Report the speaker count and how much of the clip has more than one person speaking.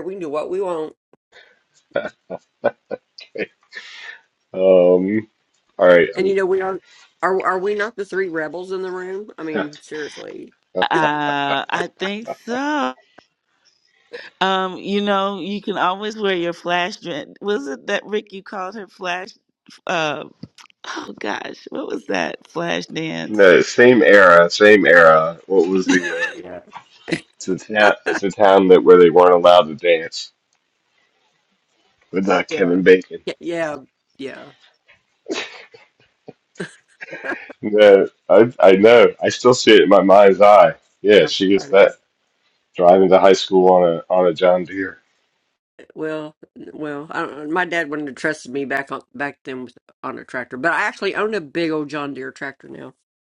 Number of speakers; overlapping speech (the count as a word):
three, about 3%